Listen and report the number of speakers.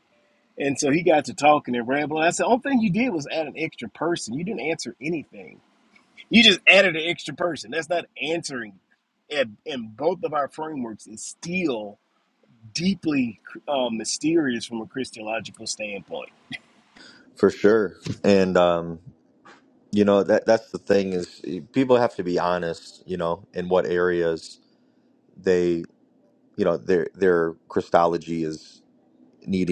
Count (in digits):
2